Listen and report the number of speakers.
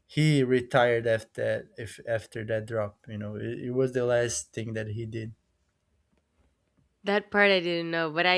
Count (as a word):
two